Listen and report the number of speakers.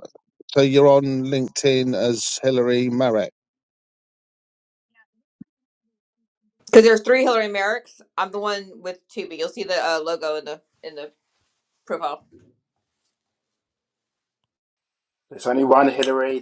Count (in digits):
3